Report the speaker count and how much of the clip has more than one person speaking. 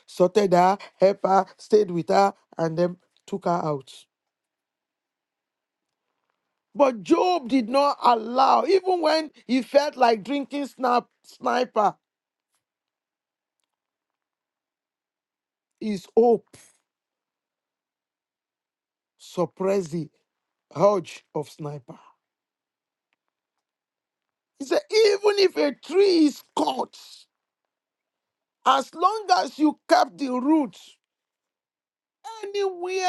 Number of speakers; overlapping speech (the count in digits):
1, no overlap